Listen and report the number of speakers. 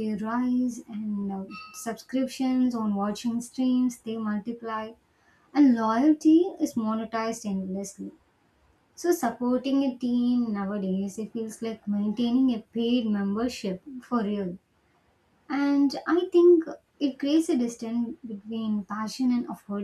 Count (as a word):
one